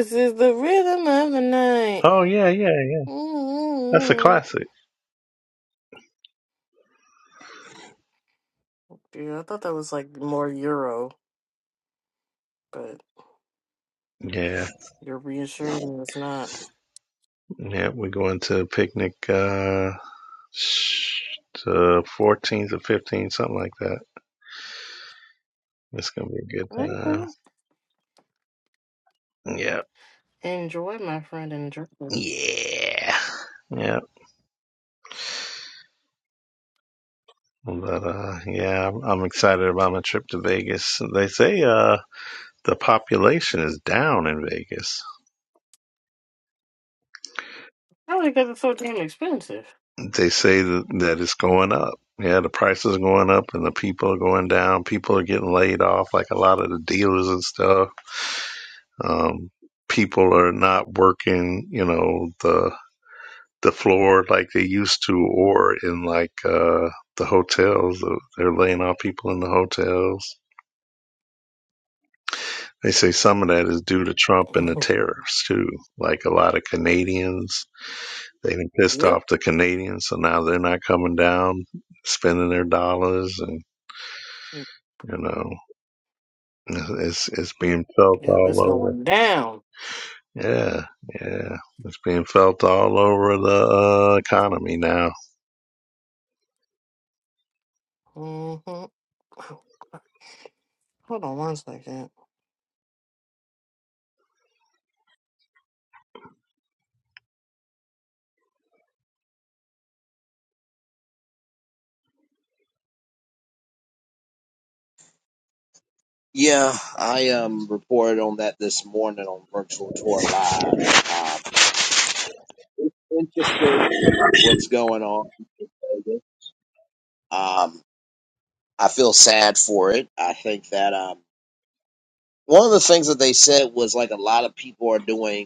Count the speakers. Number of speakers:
three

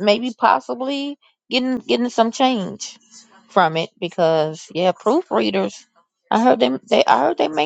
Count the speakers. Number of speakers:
one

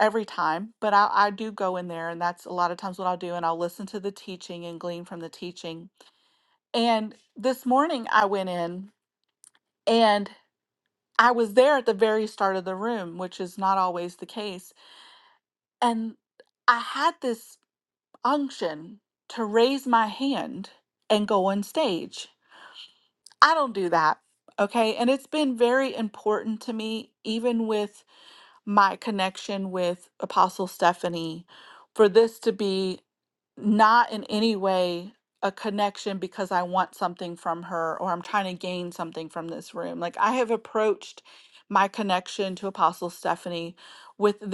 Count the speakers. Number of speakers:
one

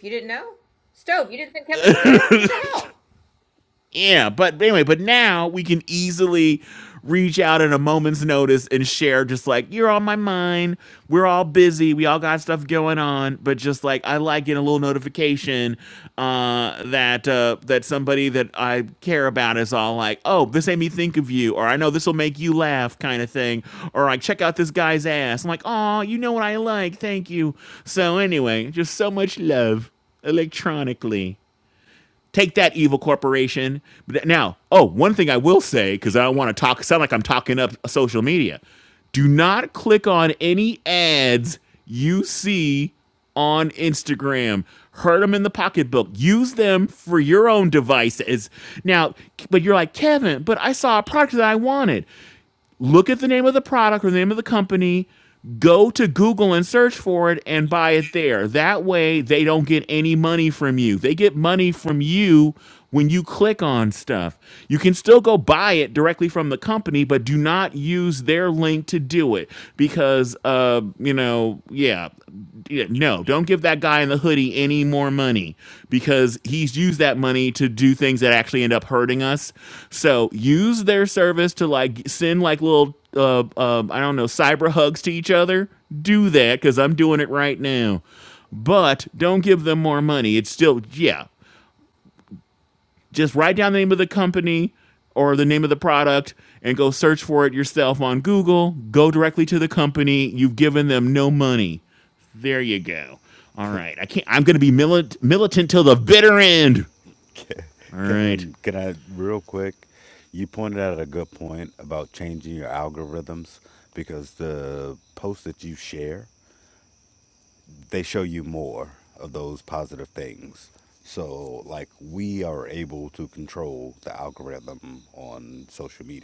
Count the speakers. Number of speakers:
three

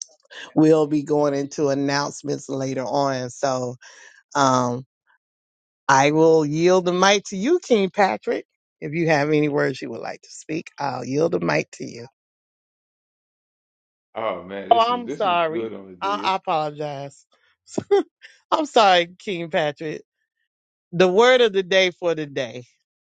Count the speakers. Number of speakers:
two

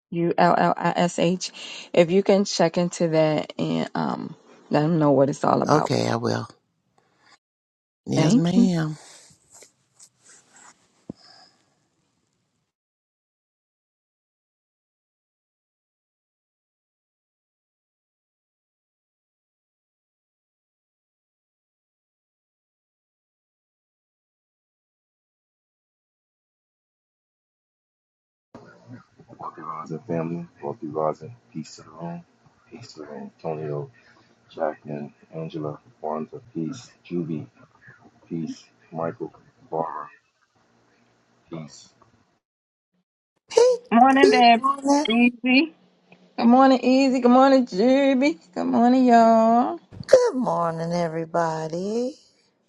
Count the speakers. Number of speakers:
four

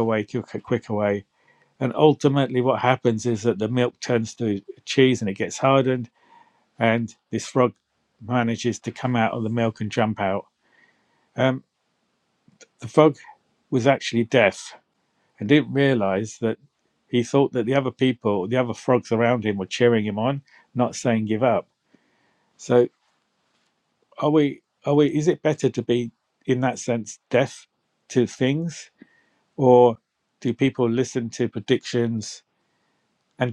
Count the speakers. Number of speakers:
one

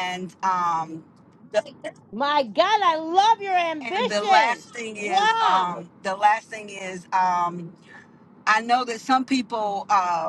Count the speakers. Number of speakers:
two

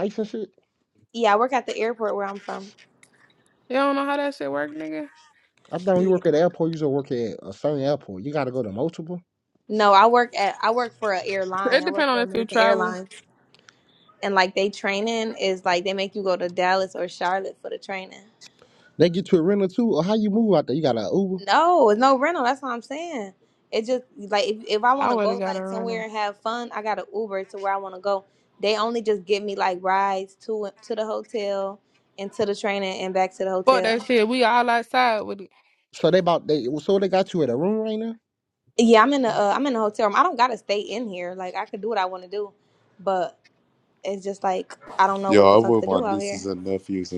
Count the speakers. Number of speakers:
four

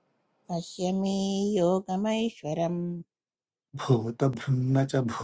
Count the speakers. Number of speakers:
two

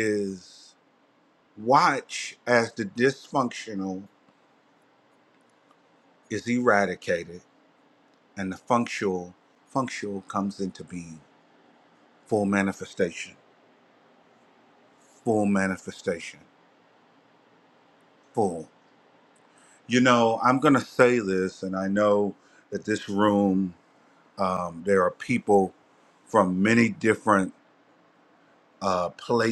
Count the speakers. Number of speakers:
one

